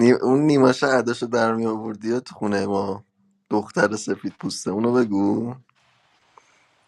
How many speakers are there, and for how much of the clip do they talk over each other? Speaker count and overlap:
one, no overlap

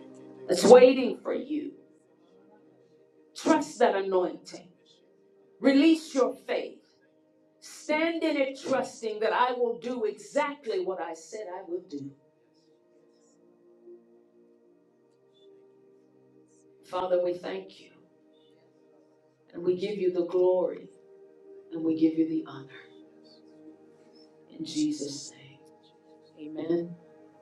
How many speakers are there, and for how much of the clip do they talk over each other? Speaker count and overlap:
one, no overlap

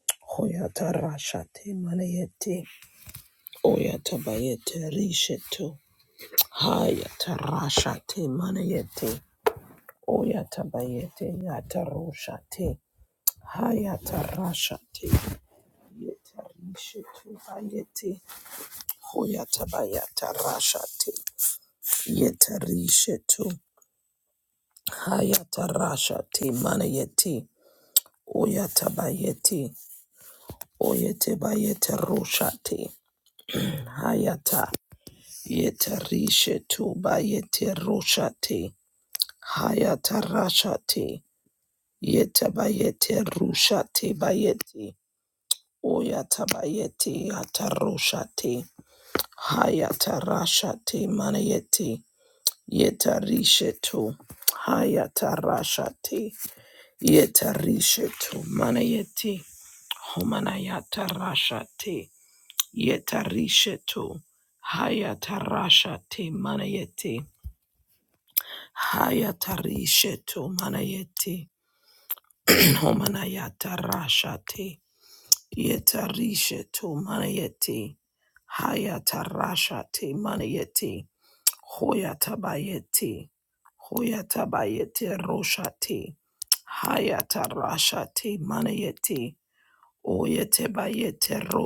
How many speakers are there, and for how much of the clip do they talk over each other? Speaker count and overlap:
one, no overlap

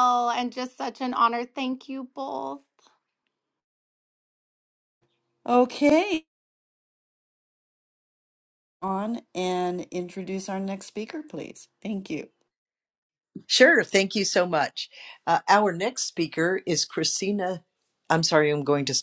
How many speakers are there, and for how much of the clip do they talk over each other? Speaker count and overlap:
three, no overlap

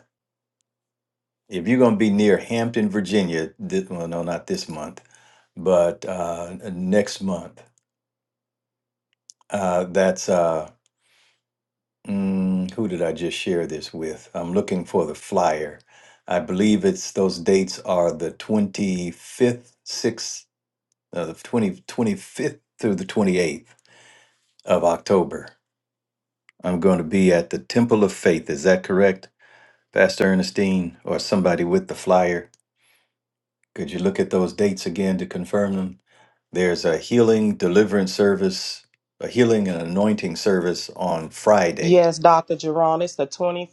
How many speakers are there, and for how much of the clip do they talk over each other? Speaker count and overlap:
two, under 1%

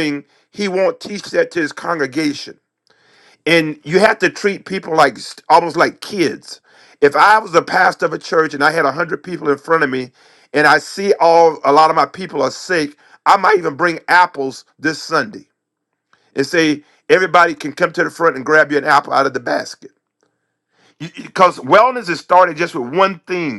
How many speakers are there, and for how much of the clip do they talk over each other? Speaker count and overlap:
one, no overlap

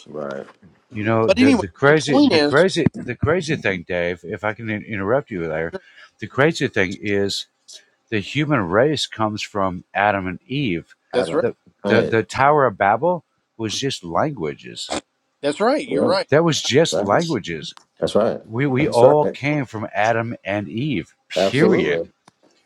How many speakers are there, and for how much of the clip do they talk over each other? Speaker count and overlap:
three, about 17%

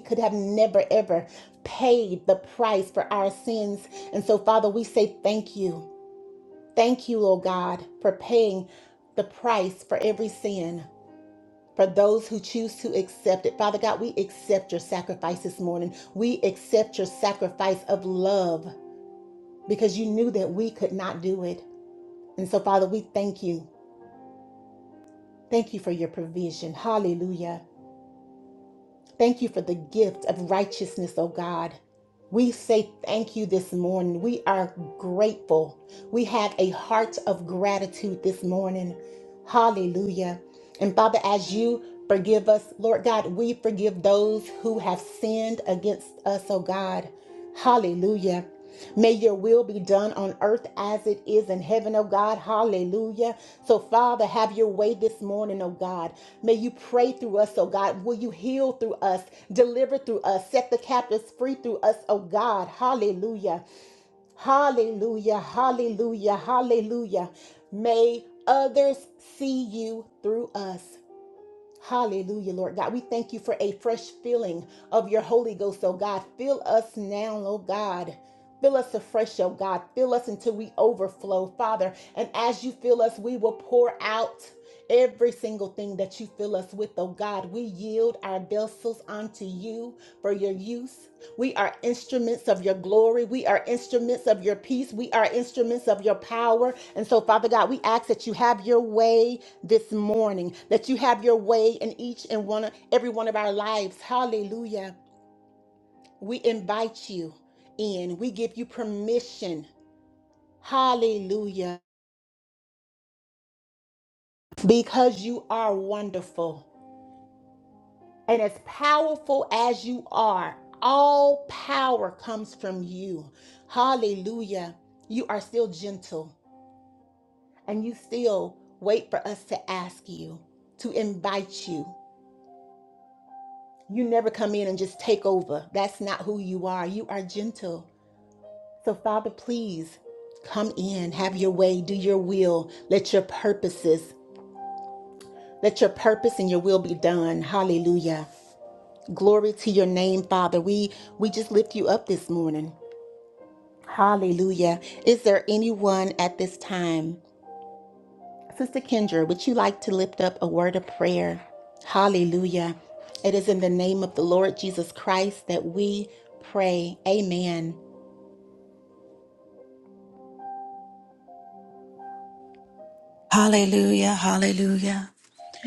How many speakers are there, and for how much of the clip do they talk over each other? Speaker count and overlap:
two, no overlap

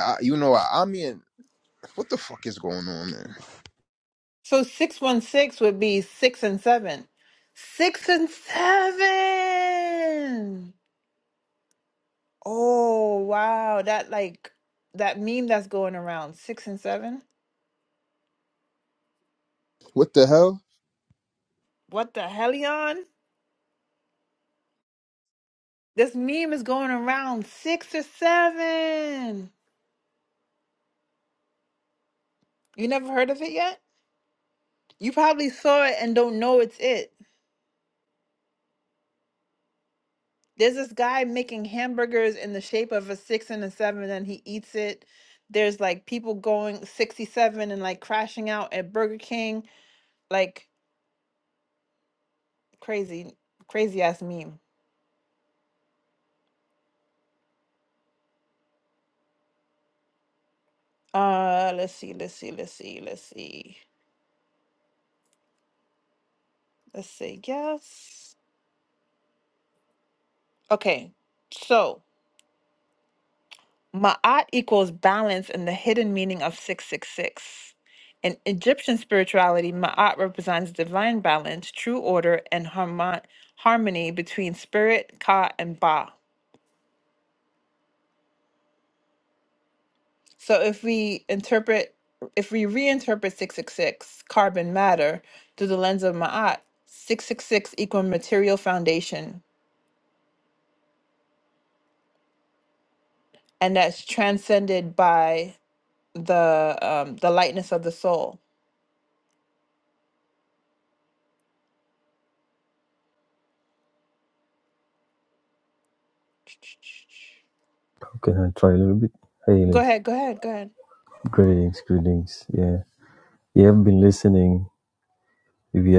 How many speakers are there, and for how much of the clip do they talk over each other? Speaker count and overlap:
three, under 1%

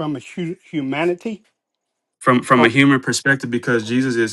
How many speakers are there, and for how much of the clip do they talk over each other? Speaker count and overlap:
two, about 3%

